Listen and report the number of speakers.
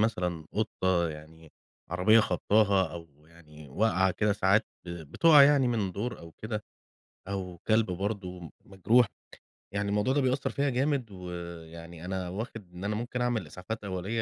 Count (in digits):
1